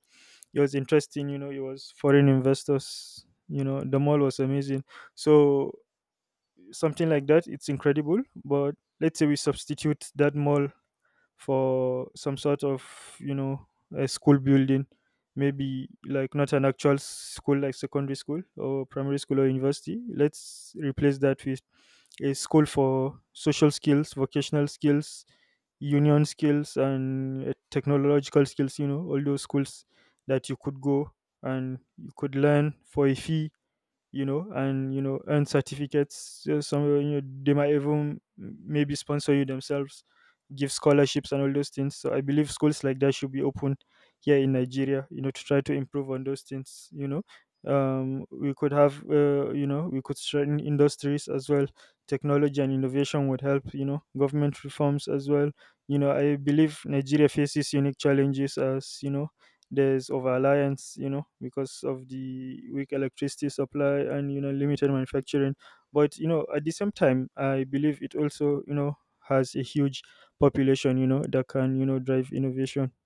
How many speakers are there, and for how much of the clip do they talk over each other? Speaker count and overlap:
1, no overlap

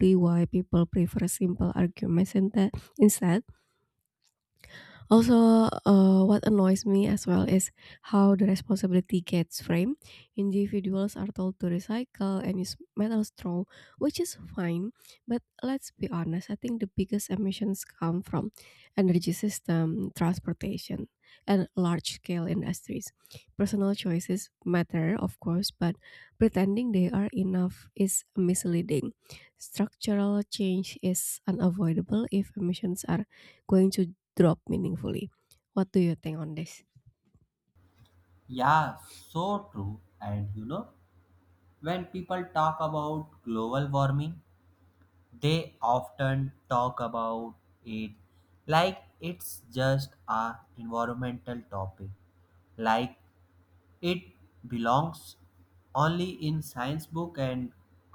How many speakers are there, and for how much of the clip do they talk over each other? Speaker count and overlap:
2, no overlap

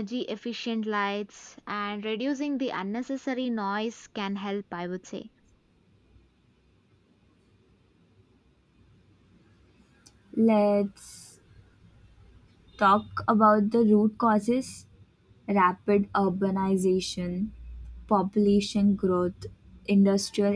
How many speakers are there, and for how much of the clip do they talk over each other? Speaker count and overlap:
2, no overlap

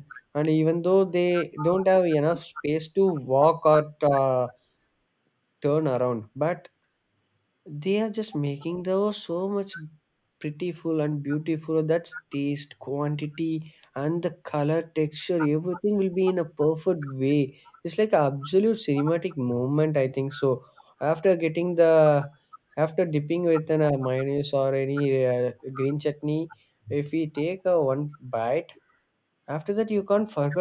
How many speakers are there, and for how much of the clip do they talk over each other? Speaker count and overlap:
1, no overlap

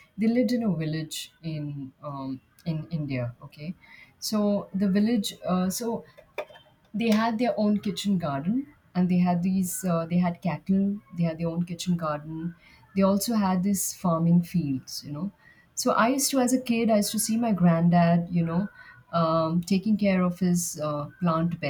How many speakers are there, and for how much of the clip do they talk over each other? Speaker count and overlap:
1, no overlap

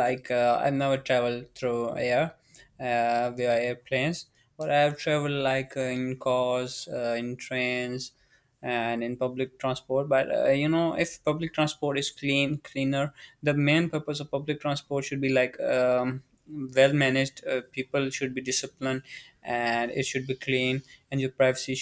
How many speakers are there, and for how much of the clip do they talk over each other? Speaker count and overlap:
1, no overlap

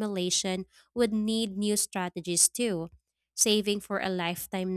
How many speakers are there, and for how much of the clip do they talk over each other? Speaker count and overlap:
1, no overlap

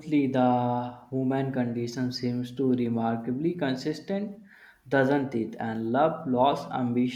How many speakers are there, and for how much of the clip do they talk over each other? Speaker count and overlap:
1, no overlap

